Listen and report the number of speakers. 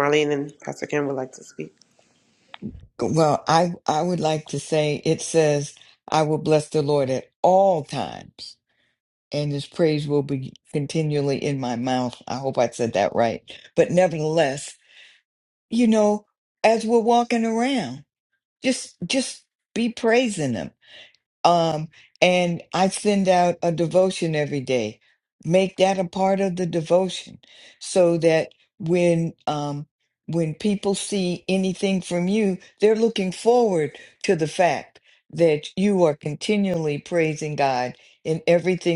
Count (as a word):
two